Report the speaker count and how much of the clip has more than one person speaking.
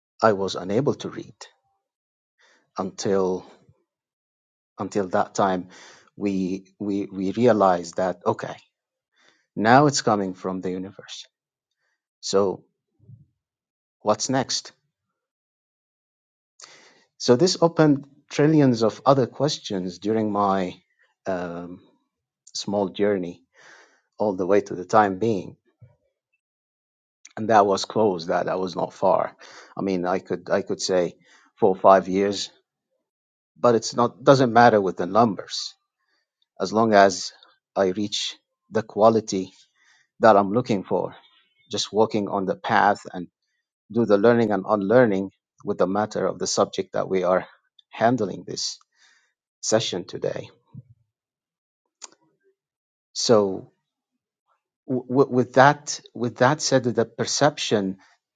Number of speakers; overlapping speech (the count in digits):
1, no overlap